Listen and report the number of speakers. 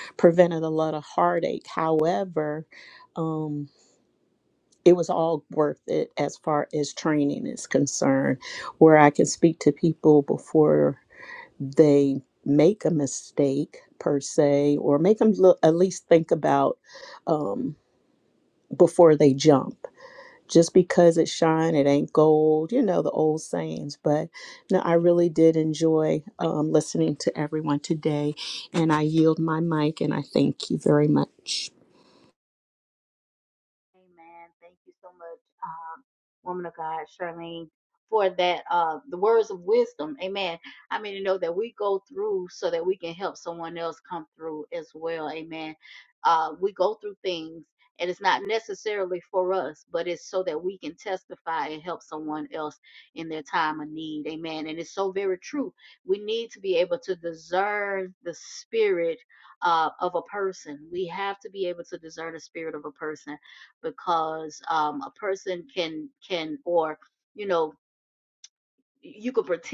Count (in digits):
2